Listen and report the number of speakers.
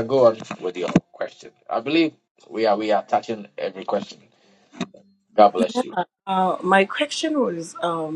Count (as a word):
two